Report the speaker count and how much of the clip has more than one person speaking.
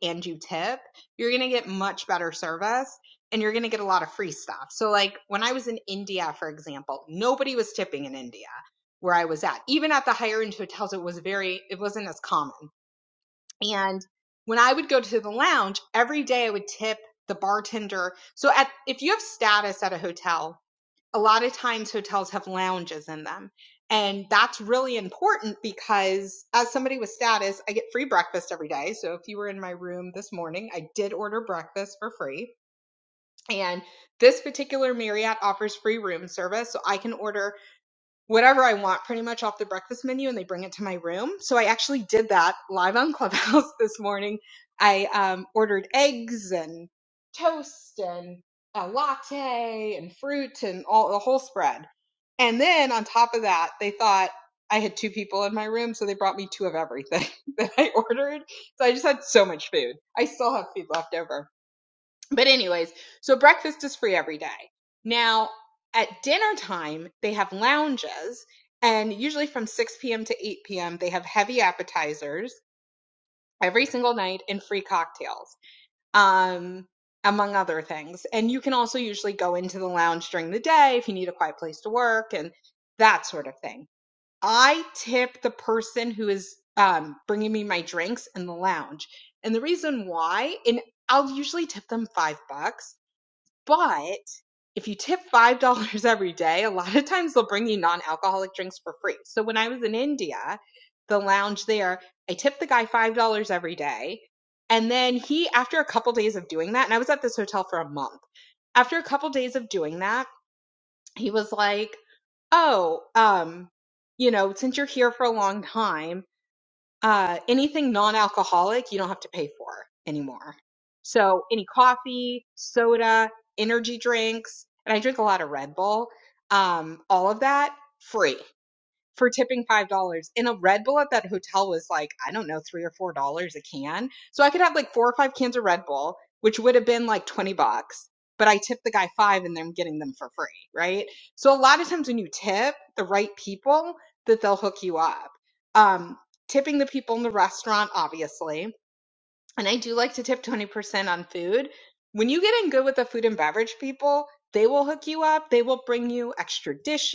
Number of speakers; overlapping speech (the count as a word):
one, no overlap